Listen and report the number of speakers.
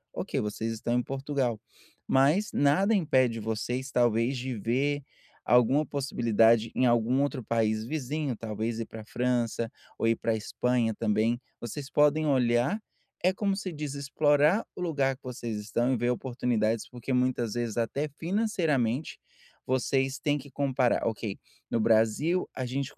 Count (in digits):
1